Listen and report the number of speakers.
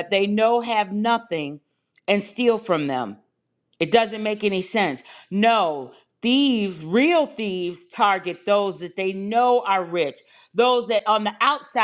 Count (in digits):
1